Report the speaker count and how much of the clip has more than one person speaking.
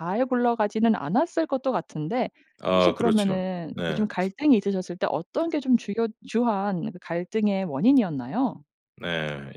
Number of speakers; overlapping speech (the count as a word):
two, about 10%